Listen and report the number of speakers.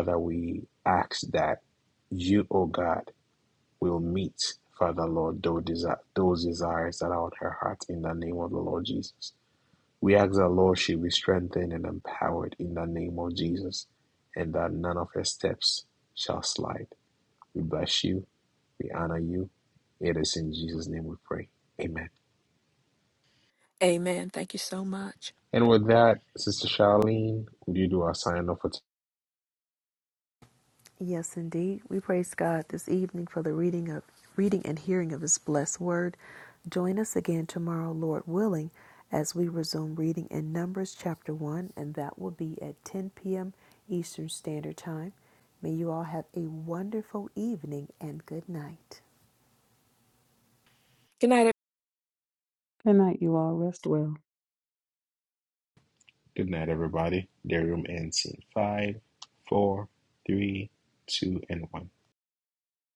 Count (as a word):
four